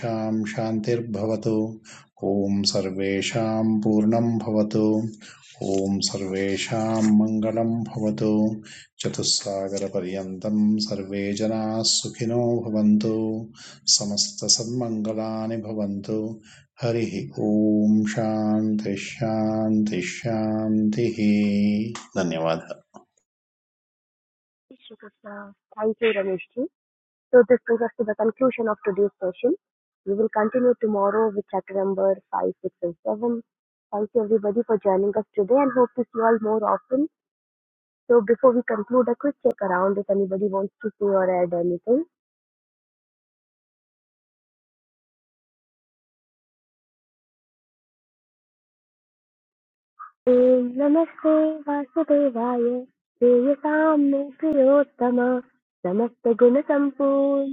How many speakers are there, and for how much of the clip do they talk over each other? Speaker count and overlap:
two, no overlap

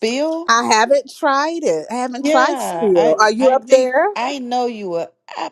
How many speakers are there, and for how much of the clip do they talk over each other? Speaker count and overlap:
two, about 35%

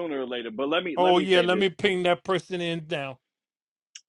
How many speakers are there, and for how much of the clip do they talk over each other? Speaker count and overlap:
two, about 17%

